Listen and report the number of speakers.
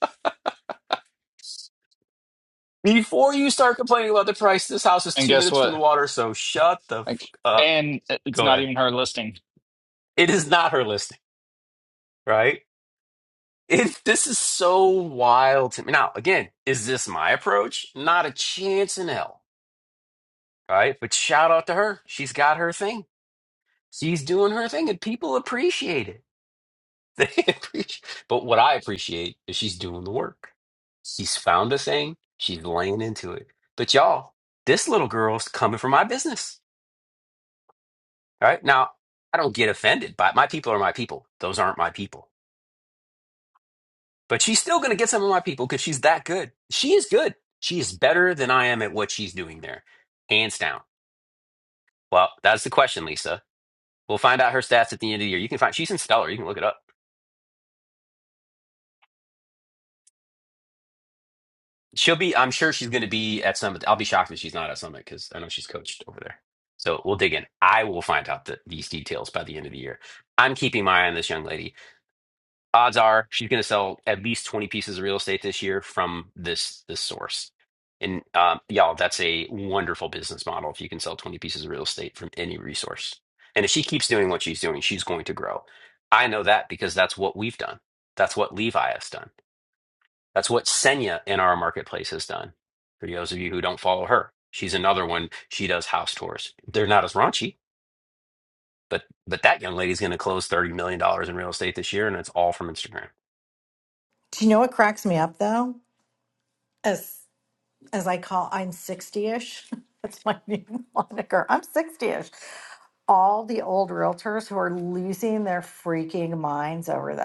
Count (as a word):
three